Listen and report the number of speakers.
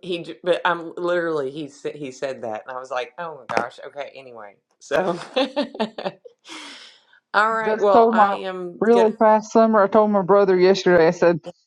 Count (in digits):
2